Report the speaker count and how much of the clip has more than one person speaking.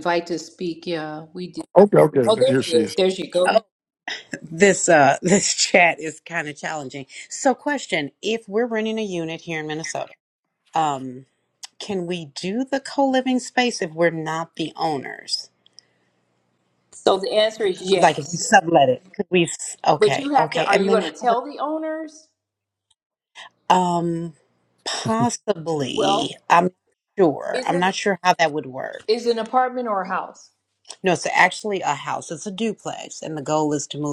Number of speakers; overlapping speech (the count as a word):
three, about 9%